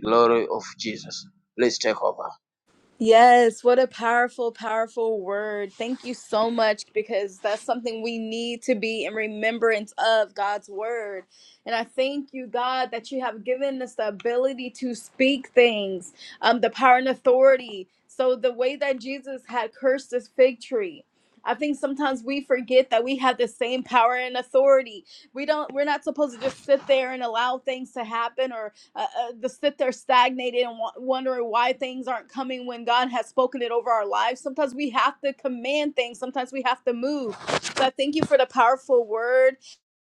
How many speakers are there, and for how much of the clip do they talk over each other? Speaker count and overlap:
two, no overlap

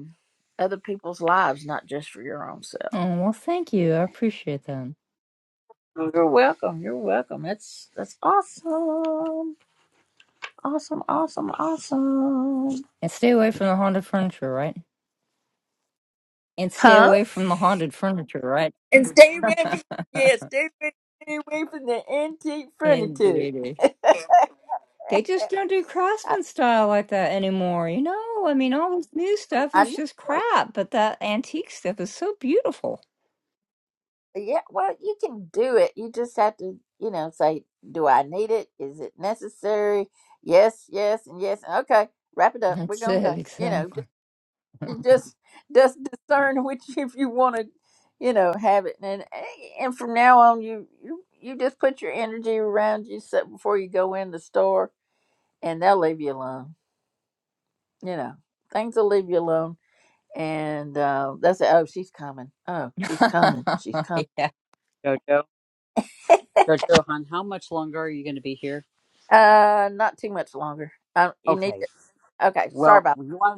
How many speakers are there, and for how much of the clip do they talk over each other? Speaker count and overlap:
three, about 5%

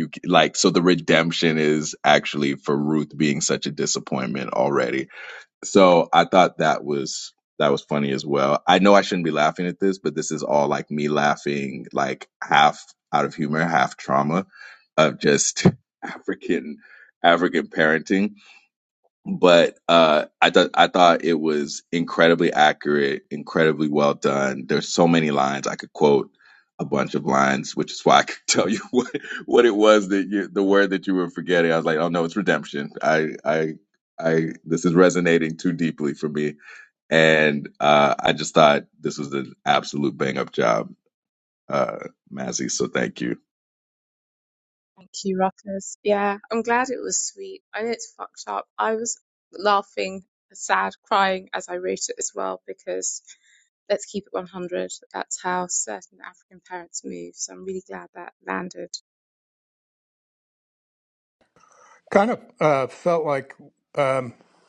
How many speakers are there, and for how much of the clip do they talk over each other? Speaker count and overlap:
three, no overlap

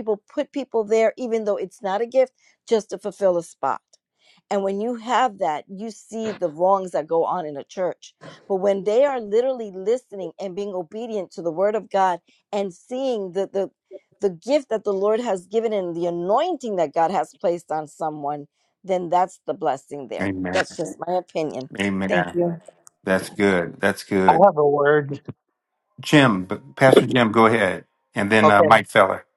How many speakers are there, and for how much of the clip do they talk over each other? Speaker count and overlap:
three, about 4%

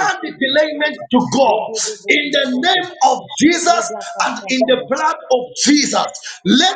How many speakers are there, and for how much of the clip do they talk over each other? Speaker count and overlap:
two, about 39%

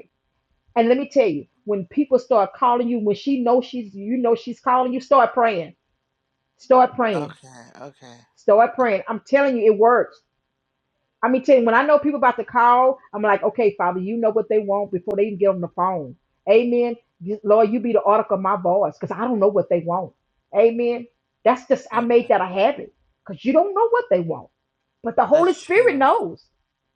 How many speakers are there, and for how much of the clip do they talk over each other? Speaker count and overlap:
two, about 4%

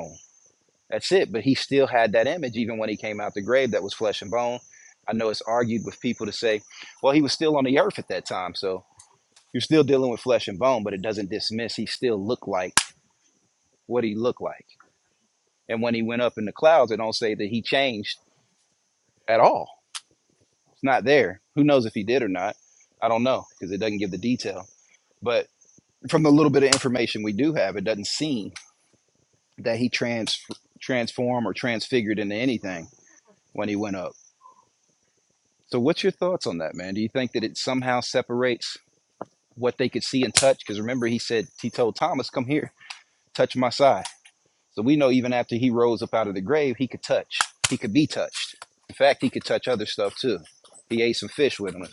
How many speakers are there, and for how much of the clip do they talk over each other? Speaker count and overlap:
one, no overlap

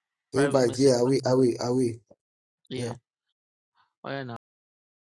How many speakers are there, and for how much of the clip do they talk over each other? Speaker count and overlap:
two, about 22%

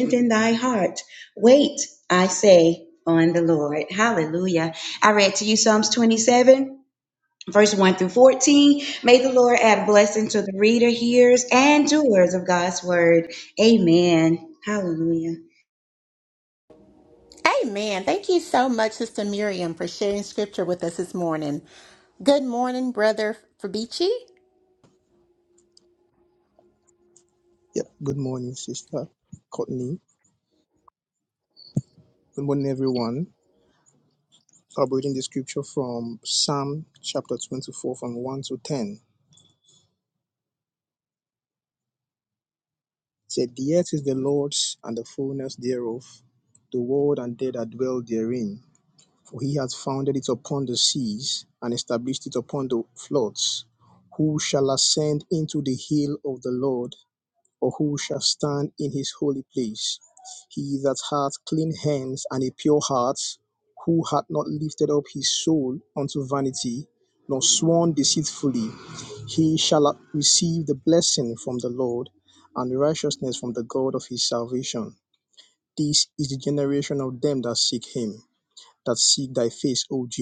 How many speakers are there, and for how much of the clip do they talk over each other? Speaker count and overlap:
three, no overlap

